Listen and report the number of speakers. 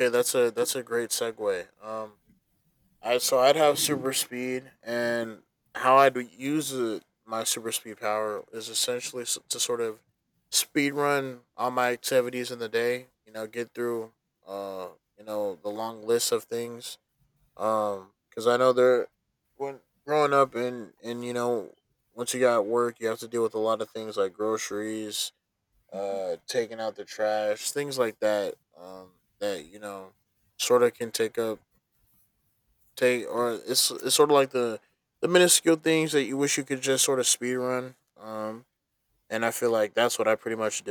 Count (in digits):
1